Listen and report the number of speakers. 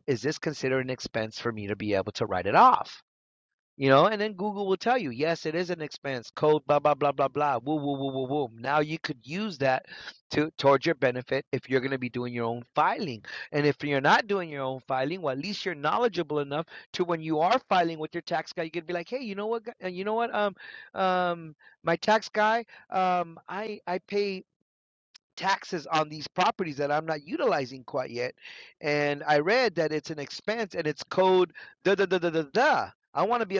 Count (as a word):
one